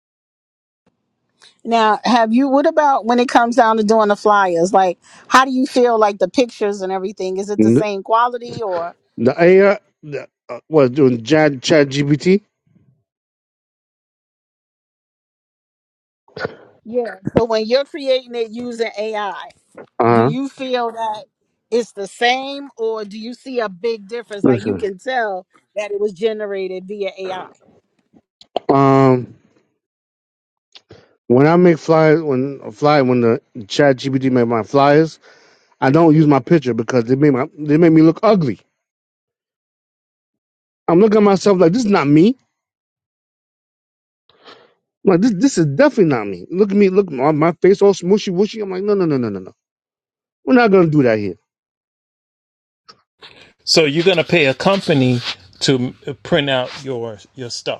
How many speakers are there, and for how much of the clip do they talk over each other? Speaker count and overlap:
three, about 2%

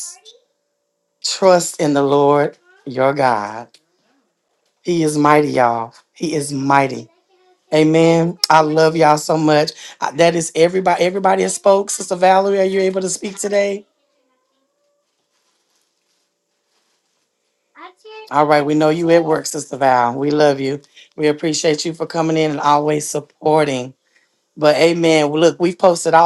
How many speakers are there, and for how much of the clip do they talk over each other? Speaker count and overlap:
one, no overlap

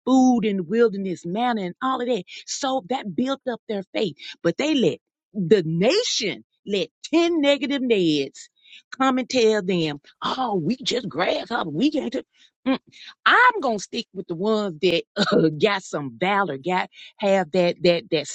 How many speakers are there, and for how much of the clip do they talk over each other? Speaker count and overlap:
one, no overlap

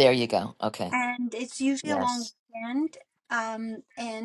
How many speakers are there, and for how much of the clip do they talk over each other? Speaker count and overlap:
two, about 6%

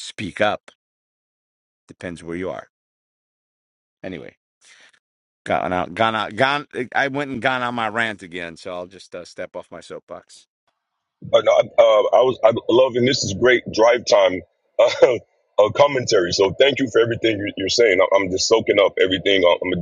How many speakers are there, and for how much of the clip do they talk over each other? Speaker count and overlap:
two, no overlap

